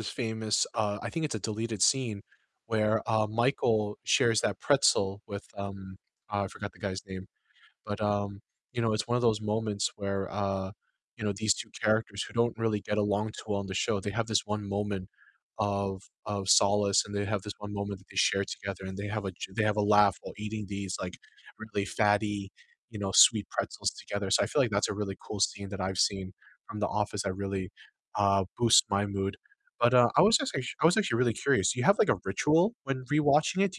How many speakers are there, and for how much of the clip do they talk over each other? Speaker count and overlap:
one, no overlap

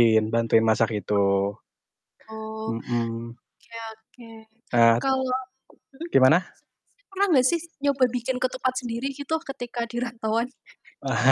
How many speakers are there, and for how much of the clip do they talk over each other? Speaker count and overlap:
two, about 1%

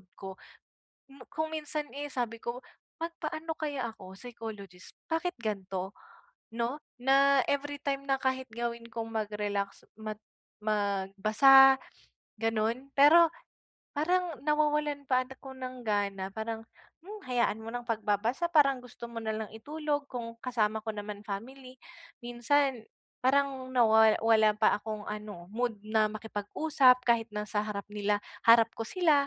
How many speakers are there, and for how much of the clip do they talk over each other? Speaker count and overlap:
one, no overlap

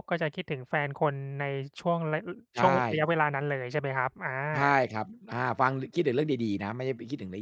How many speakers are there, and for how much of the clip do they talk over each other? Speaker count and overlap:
two, about 1%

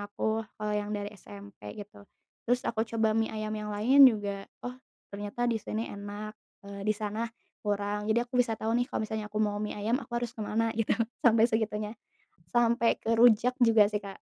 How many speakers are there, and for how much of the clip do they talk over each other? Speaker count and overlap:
one, no overlap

